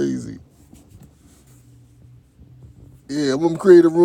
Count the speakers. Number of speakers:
one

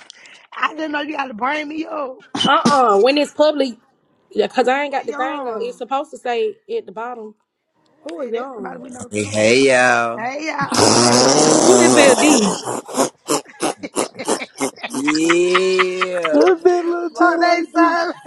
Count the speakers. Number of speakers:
four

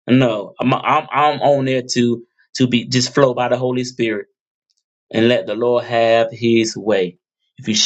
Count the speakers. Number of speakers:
one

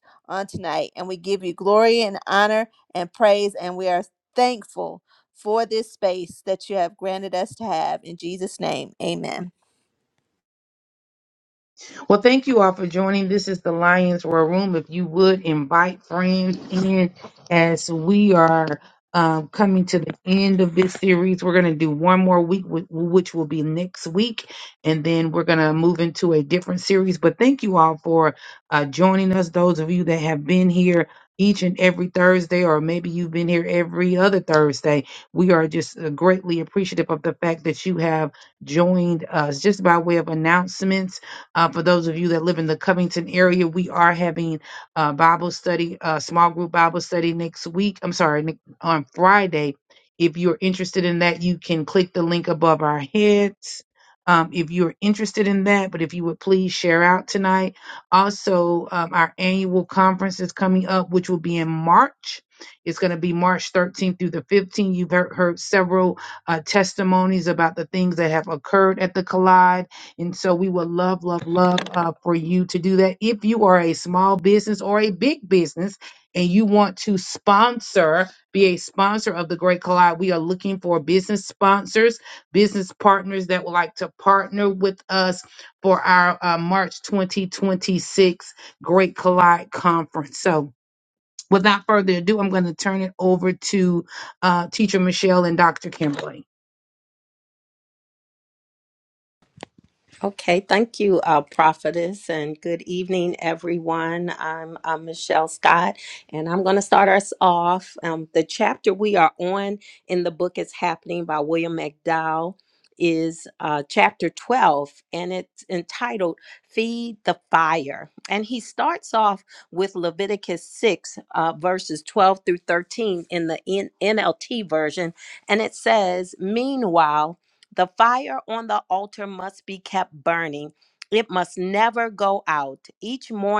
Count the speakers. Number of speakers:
three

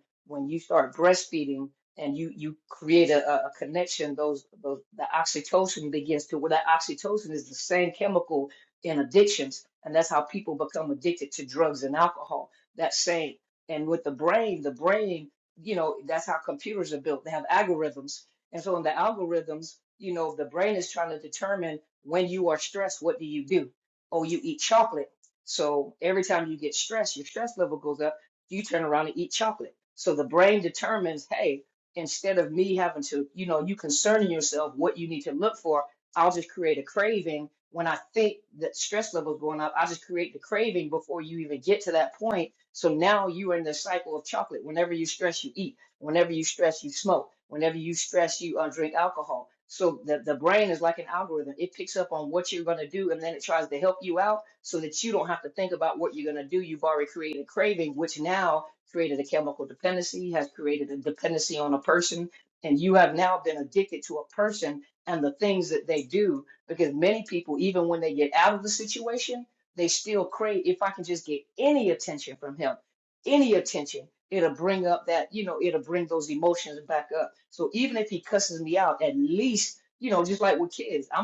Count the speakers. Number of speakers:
one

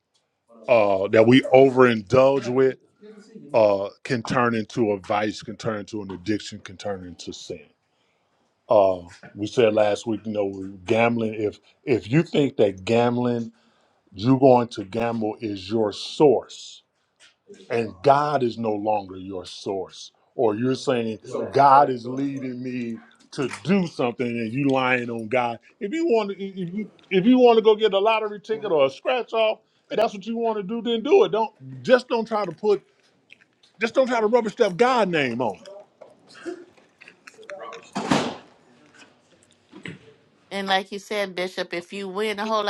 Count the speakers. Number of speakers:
two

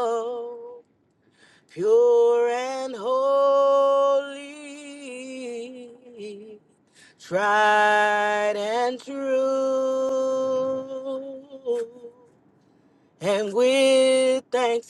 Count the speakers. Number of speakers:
one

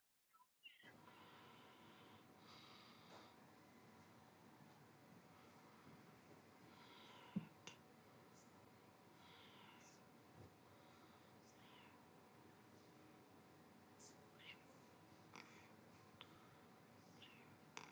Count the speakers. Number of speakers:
zero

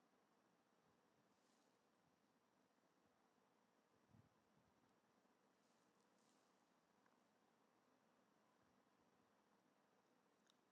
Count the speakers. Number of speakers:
zero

